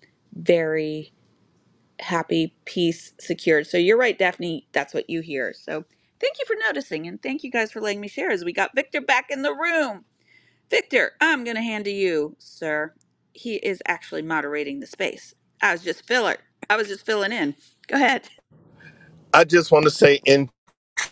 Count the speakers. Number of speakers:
two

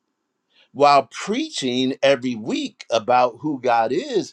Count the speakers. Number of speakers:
one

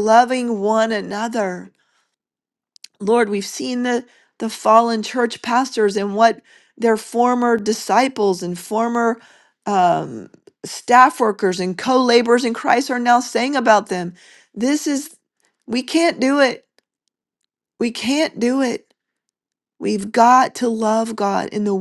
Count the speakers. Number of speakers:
one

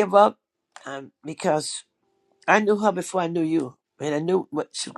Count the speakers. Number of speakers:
one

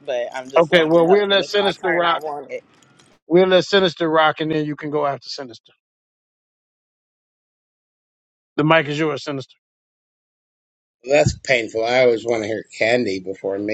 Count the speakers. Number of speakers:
three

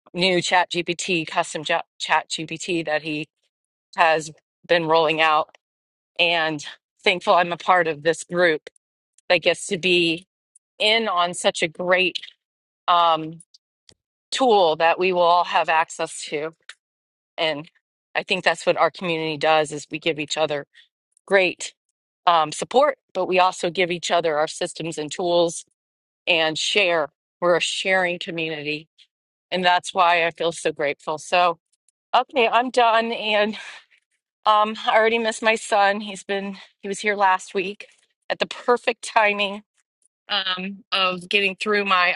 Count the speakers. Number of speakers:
one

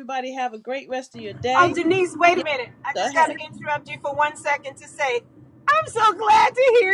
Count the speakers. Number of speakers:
two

